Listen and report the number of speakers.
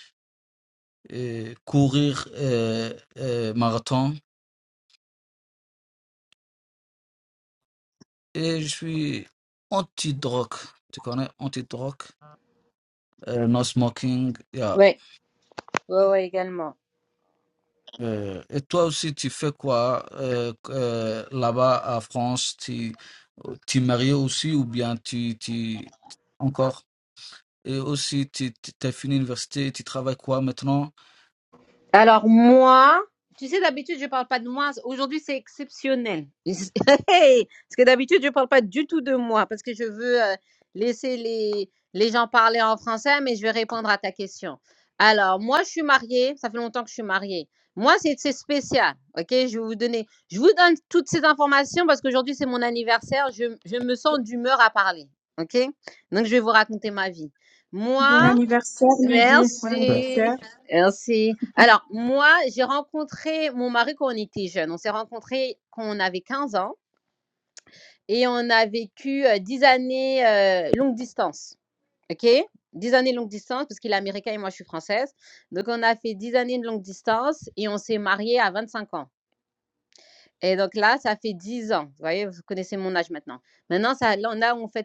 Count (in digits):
3